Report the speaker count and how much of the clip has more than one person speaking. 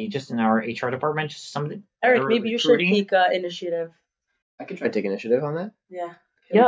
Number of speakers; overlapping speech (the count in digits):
3, about 19%